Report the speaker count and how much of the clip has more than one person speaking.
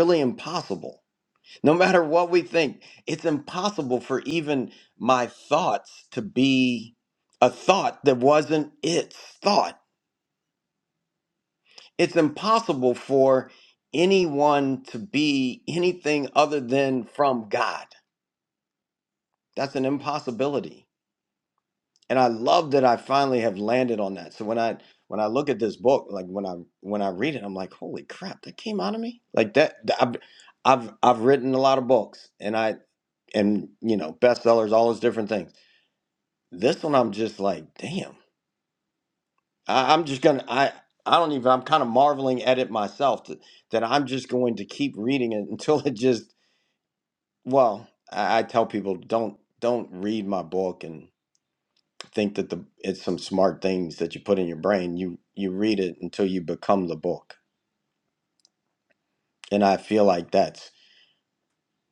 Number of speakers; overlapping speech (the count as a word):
one, no overlap